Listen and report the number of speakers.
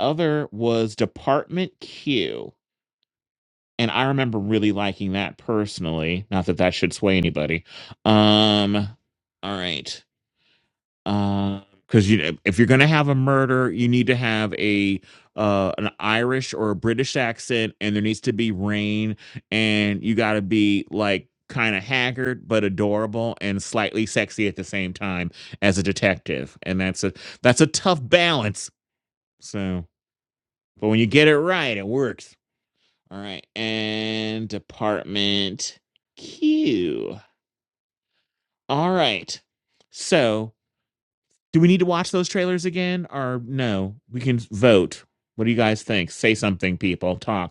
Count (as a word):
one